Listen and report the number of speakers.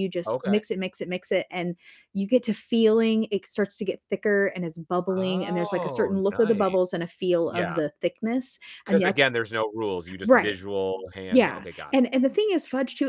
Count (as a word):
two